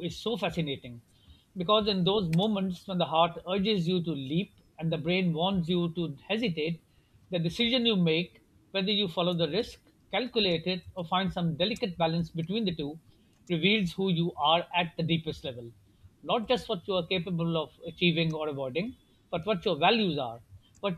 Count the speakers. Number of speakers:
one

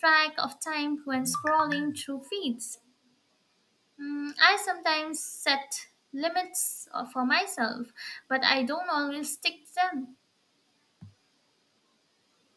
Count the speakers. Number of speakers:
one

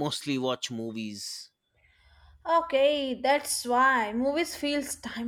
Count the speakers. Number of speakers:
two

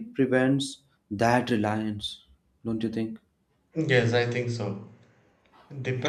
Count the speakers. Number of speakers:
two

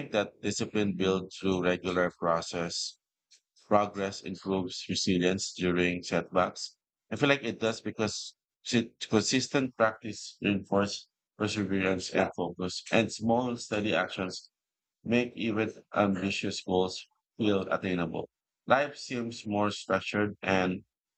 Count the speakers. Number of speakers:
one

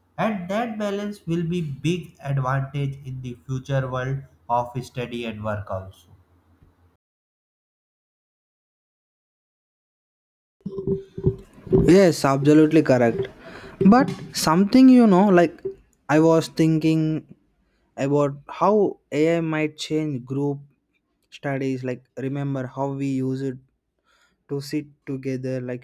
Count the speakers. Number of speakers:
two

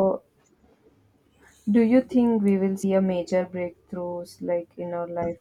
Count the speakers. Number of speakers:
one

